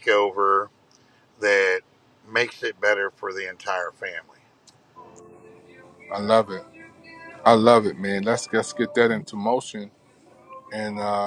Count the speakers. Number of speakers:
2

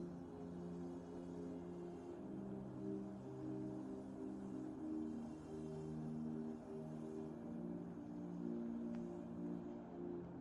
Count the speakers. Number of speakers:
0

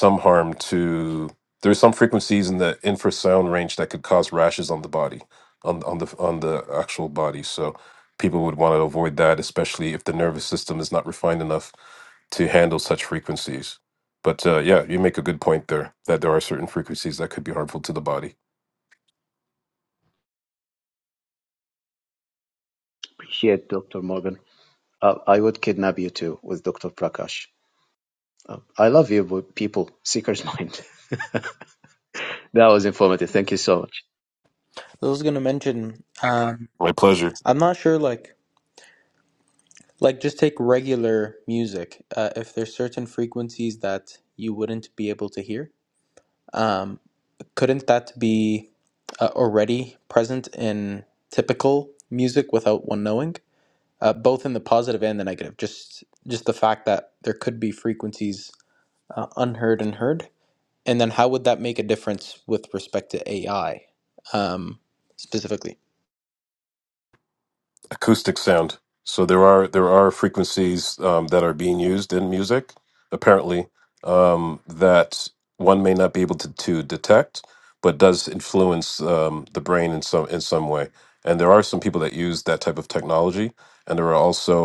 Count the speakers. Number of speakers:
3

